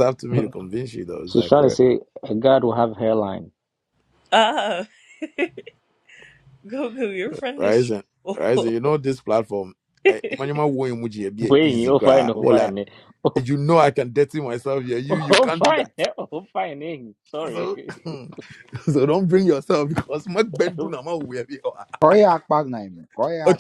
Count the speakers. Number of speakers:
4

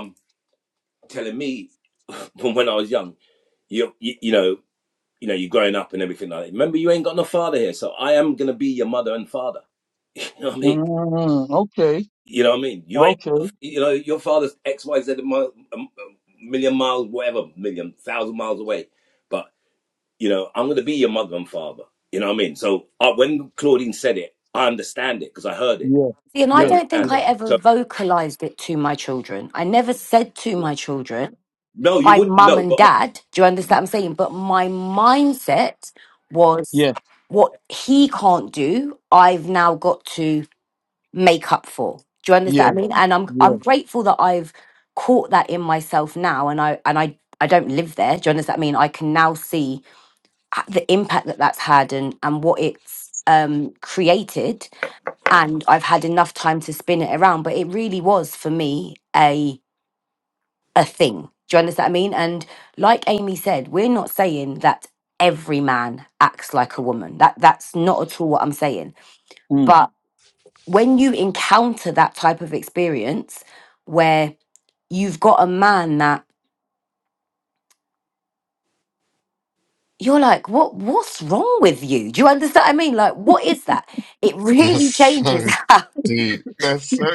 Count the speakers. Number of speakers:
4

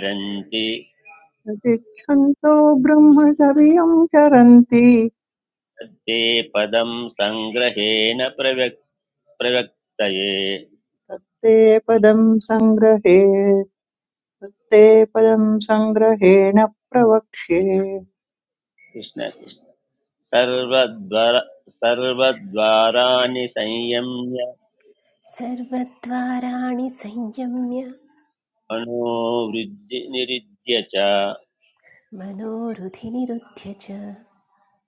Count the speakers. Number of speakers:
3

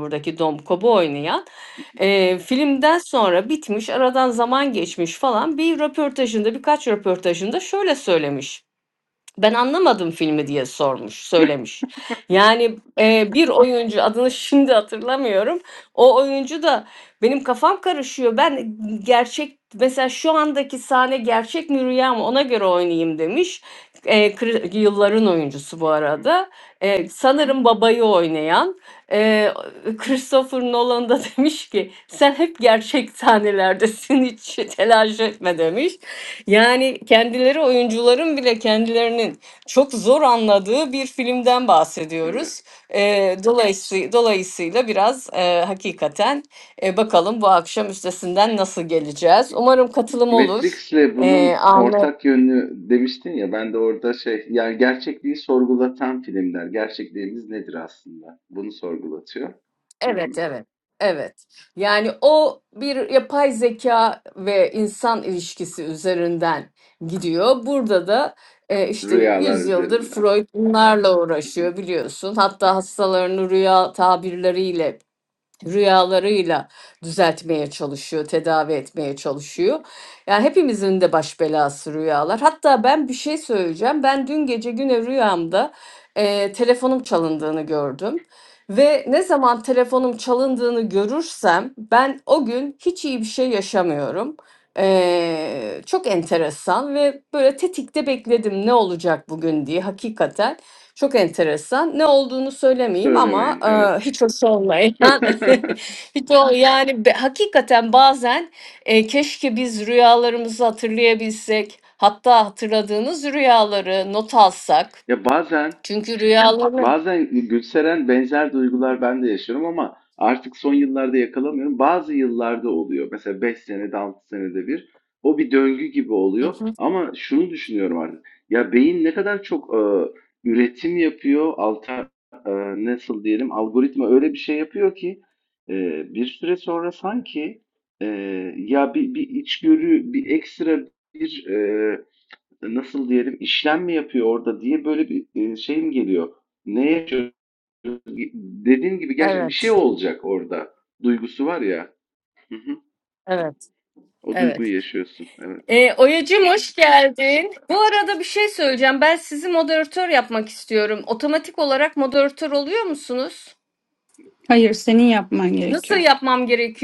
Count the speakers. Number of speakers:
3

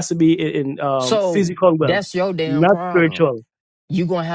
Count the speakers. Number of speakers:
2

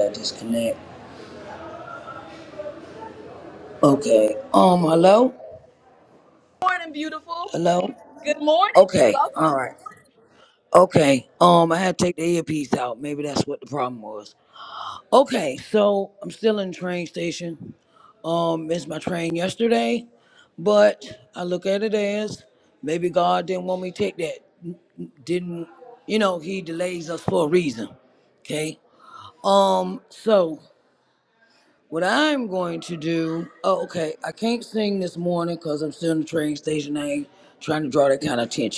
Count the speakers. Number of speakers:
2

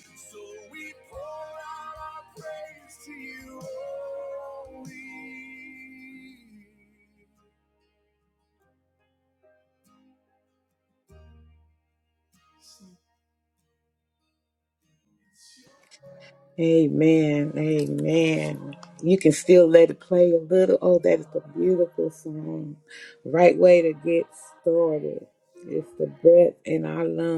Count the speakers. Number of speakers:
2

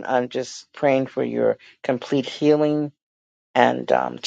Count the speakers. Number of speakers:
1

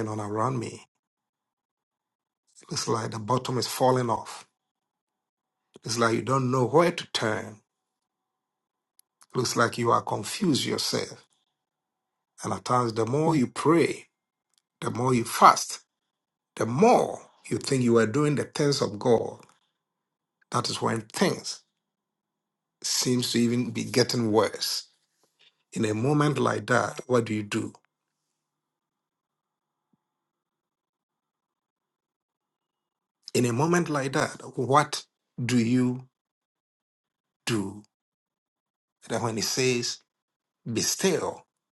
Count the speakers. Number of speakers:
1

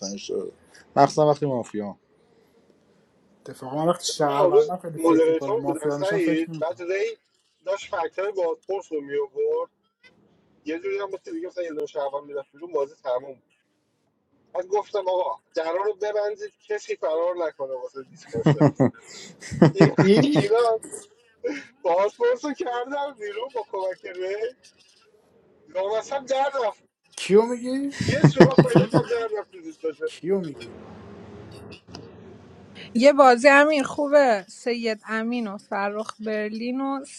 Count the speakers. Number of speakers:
4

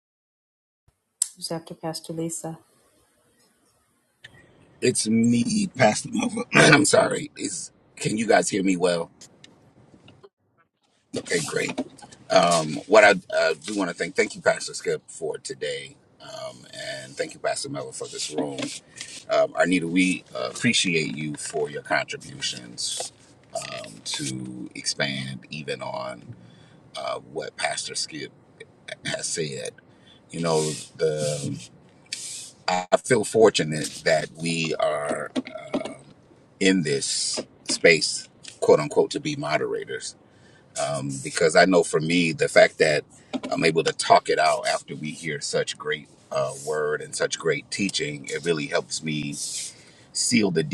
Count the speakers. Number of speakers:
2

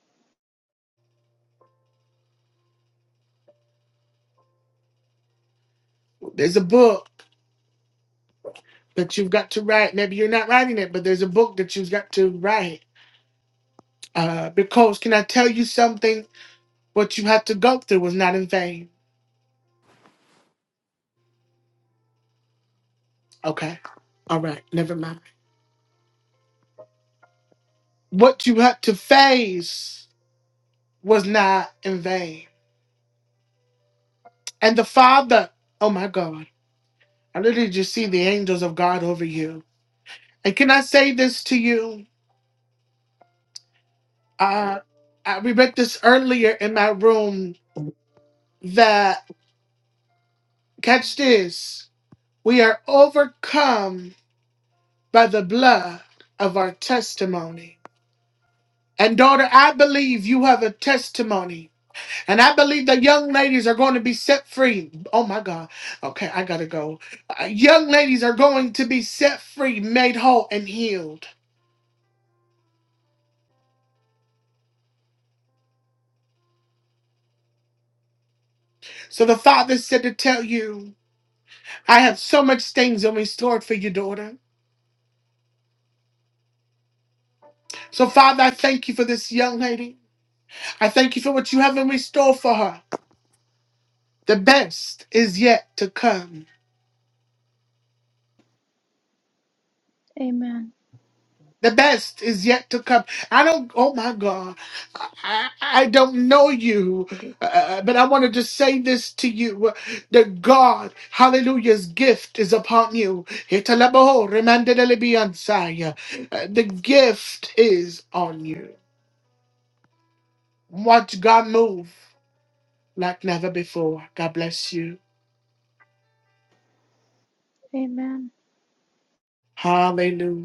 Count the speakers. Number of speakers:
2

